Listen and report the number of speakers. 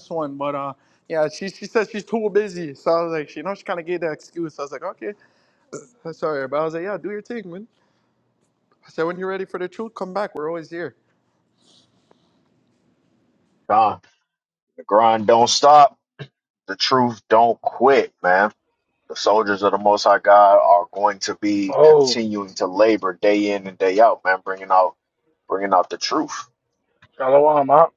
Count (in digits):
3